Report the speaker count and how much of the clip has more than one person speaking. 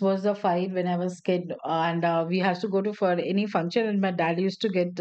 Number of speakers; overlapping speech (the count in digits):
1, no overlap